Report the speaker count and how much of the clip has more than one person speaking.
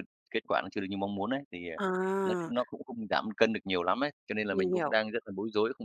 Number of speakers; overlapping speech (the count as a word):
two, about 13%